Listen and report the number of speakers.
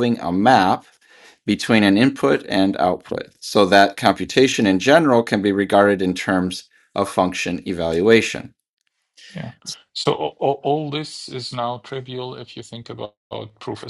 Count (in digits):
2